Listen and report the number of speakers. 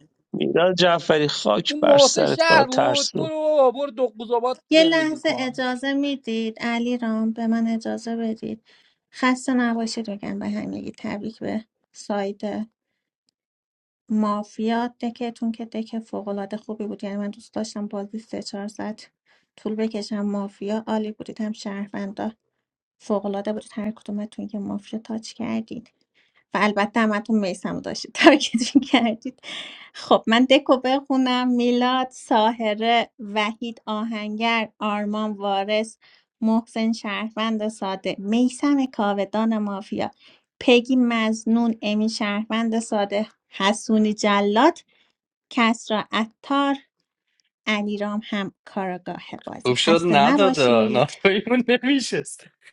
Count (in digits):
4